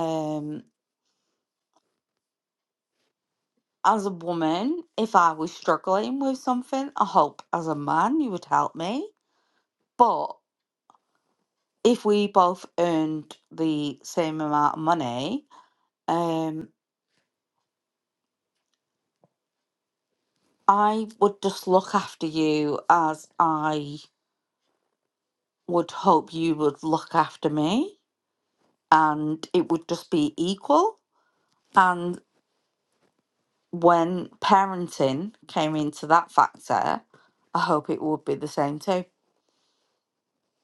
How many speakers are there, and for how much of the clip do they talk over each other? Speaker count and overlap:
1, no overlap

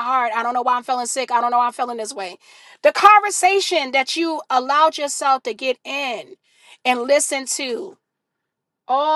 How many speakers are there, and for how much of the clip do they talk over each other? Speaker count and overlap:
1, no overlap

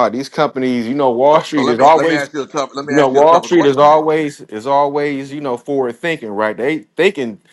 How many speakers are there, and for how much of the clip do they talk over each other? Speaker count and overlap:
2, about 27%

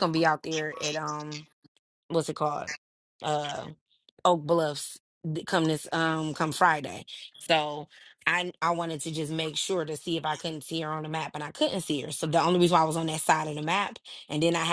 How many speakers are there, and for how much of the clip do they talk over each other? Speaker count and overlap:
1, no overlap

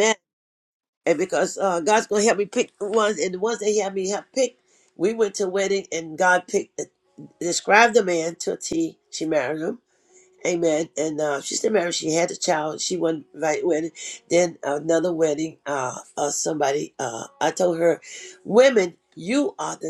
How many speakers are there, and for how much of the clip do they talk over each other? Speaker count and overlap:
1, no overlap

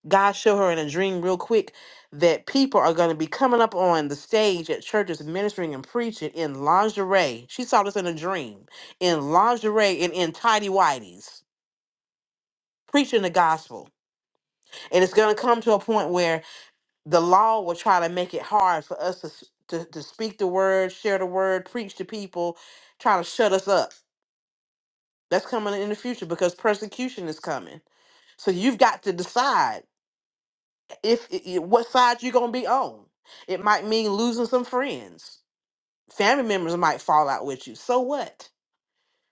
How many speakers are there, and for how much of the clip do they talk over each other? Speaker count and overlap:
1, no overlap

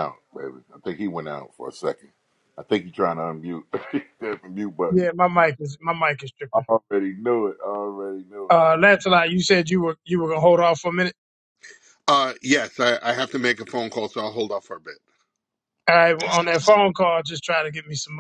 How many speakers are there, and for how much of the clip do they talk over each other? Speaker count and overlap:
3, about 3%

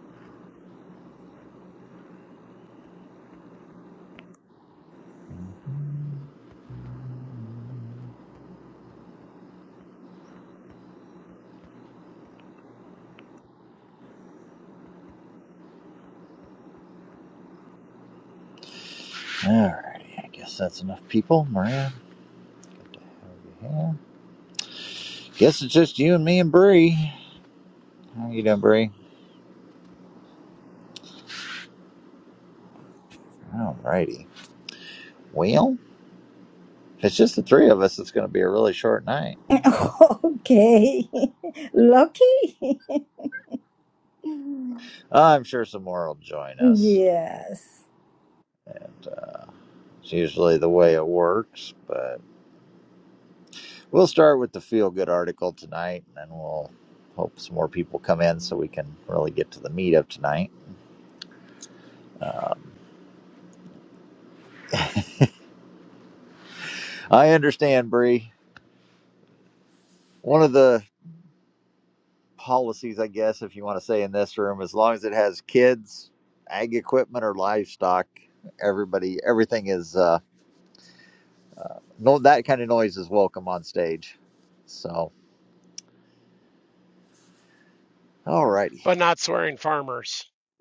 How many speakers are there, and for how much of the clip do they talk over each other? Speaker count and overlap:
3, under 1%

